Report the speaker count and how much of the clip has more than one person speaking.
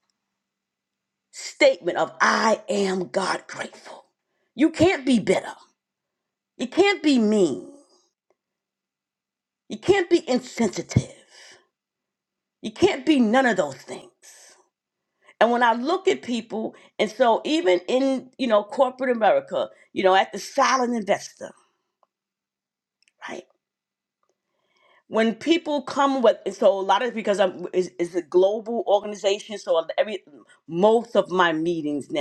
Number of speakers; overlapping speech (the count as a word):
one, no overlap